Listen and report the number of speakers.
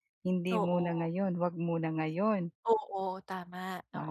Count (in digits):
2